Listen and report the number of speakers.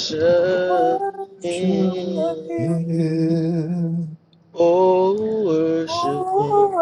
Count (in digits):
3